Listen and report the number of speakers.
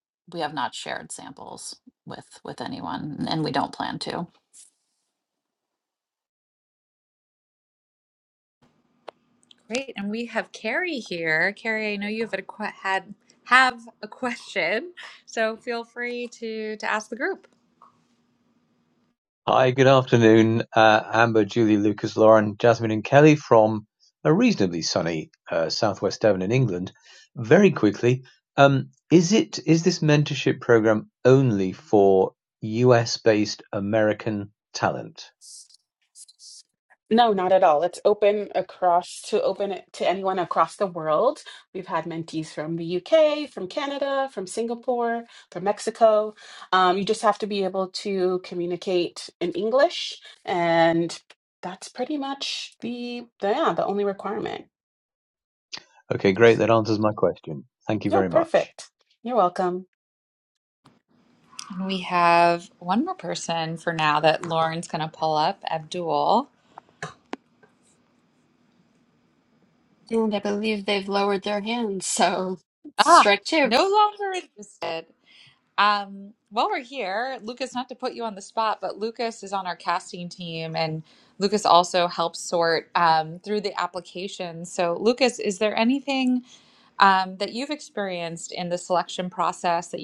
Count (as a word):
five